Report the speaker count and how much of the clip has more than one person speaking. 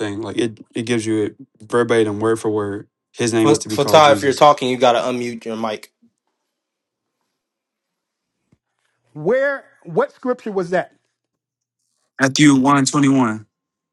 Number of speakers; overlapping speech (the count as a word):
three, about 6%